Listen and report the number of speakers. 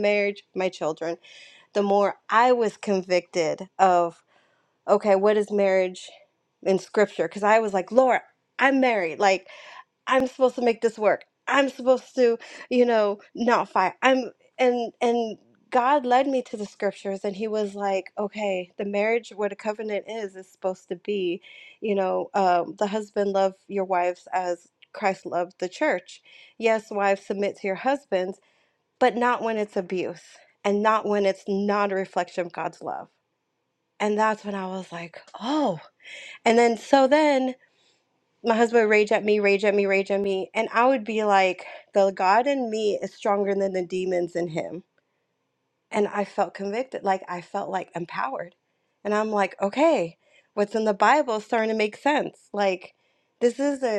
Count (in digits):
1